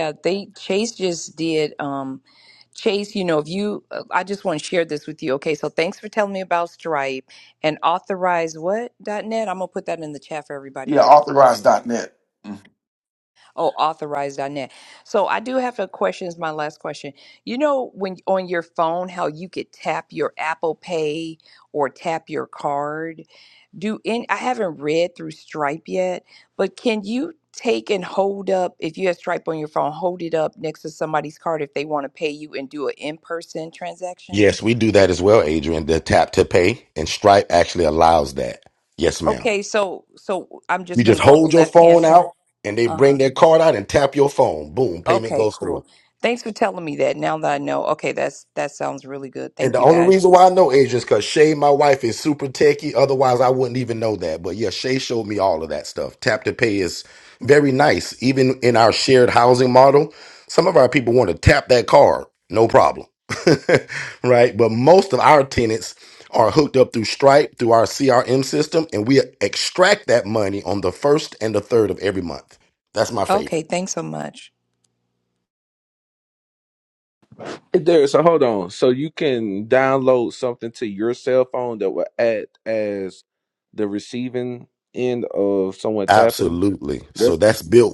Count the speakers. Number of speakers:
4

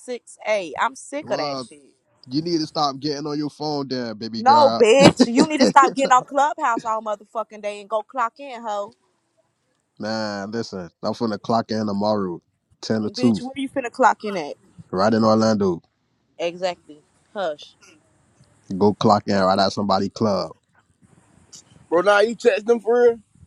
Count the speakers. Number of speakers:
3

